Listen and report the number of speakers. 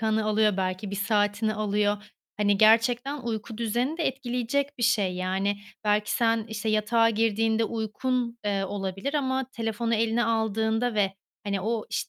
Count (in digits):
1